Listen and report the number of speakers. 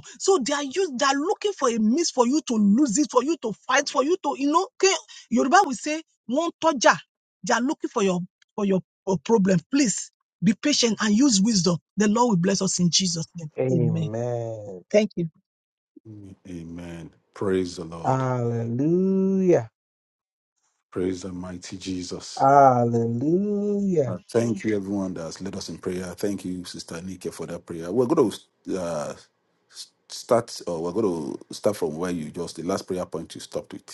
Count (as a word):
three